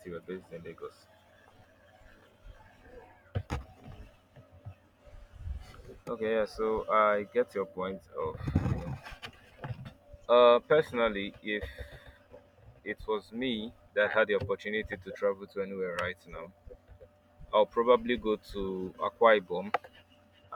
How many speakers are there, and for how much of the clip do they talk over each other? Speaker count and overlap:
1, no overlap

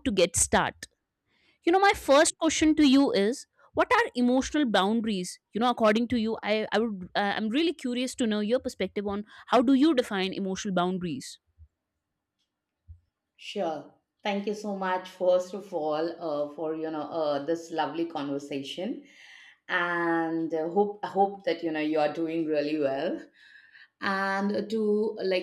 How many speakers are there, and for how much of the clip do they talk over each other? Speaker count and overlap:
2, no overlap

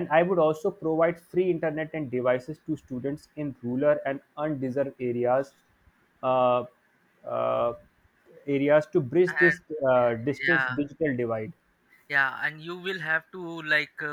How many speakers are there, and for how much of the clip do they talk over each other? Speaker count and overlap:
2, about 4%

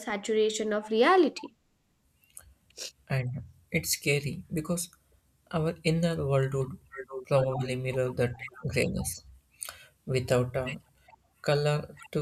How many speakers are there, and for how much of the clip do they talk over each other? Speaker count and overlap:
2, no overlap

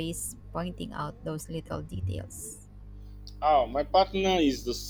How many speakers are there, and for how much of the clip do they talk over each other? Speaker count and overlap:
2, no overlap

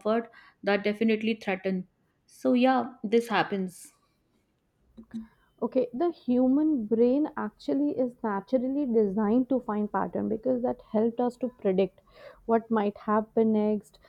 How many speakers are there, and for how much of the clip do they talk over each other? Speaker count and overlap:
2, no overlap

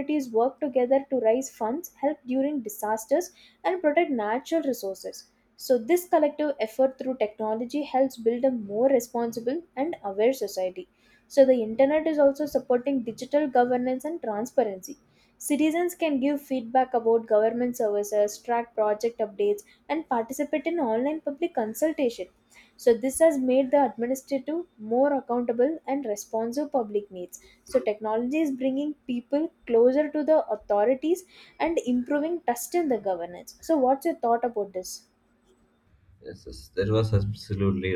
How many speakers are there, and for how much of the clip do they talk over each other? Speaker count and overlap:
2, no overlap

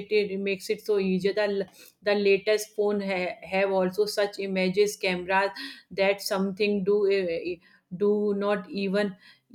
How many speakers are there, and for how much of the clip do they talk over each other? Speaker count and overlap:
1, no overlap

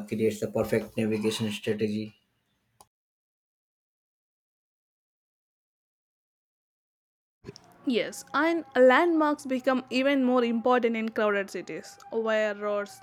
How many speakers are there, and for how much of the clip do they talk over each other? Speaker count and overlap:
2, no overlap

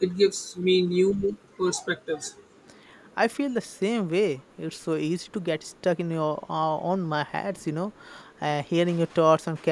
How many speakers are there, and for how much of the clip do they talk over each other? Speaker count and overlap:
2, no overlap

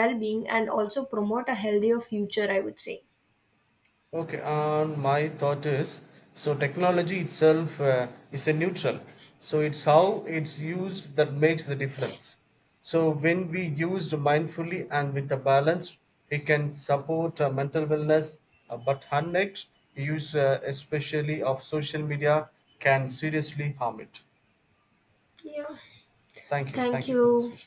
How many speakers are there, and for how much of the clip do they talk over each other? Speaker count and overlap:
2, about 3%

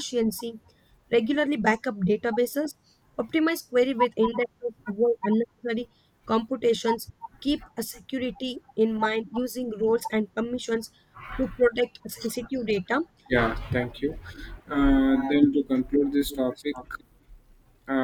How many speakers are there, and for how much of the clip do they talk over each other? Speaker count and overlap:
2, no overlap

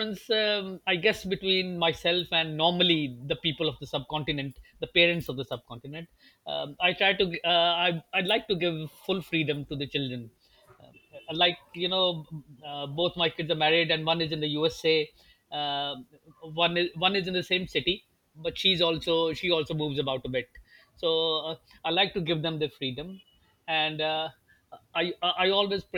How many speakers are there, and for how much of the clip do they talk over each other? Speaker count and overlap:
1, no overlap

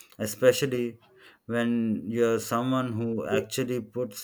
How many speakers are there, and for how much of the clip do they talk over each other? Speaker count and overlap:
1, no overlap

